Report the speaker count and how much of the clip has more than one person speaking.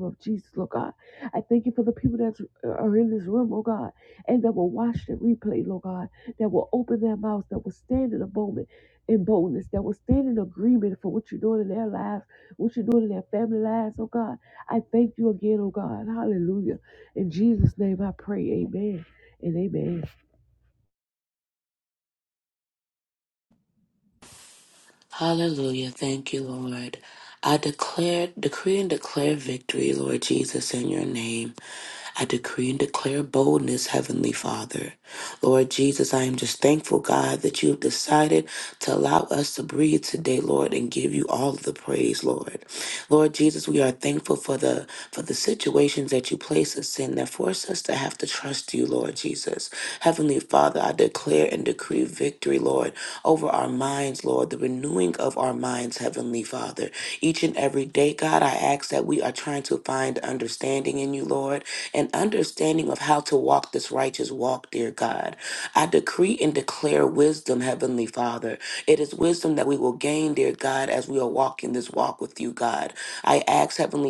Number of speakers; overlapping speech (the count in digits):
2, no overlap